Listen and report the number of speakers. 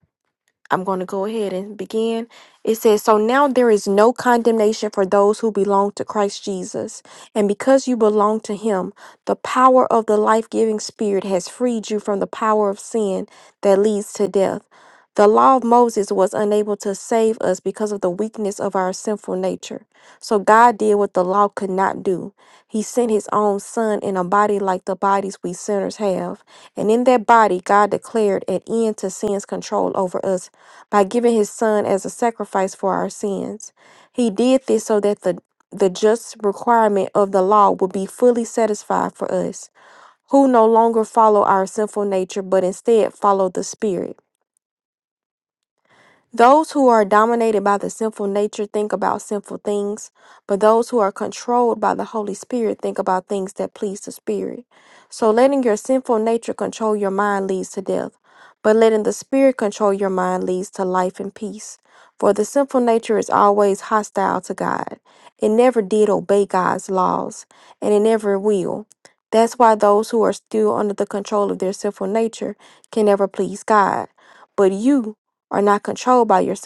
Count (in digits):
1